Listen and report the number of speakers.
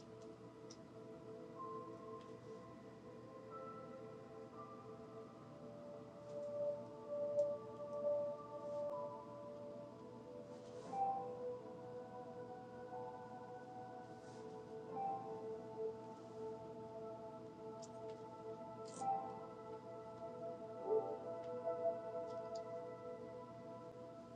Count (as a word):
zero